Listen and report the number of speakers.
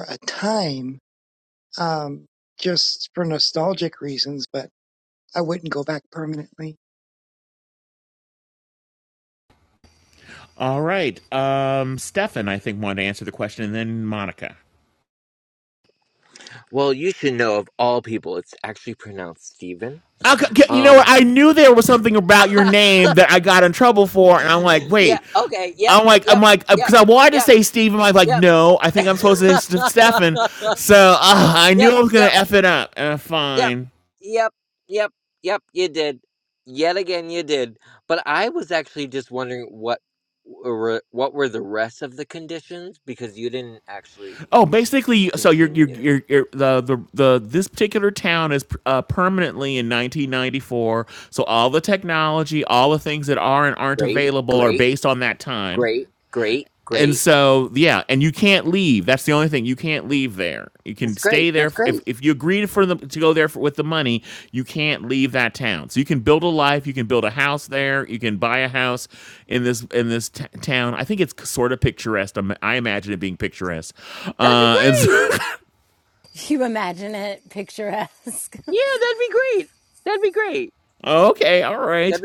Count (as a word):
four